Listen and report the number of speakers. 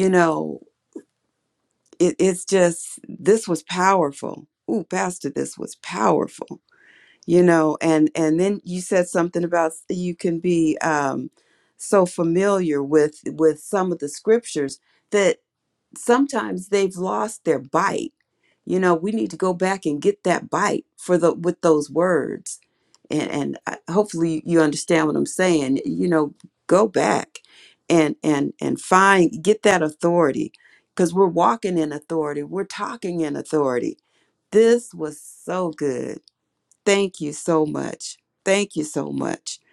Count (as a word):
one